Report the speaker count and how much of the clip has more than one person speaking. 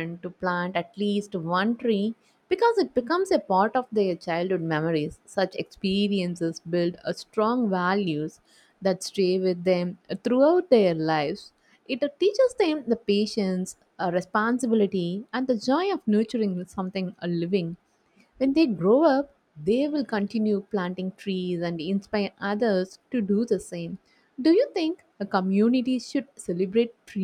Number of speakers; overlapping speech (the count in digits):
1, no overlap